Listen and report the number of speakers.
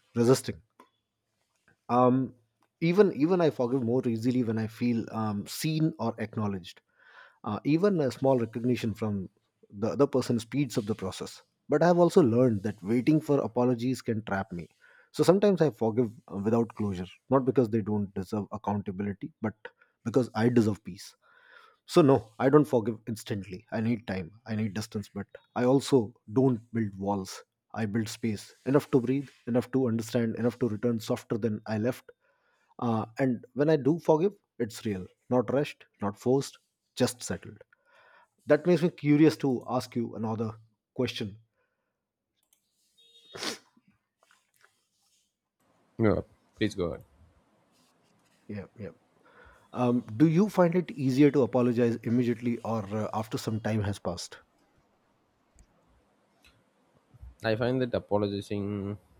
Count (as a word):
two